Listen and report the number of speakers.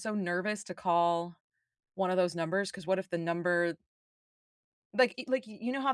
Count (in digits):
1